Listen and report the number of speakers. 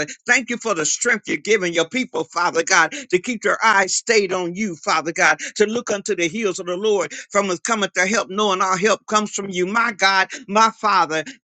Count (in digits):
1